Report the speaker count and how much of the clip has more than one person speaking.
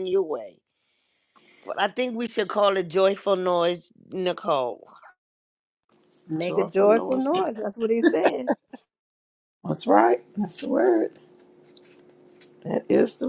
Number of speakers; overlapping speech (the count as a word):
three, about 7%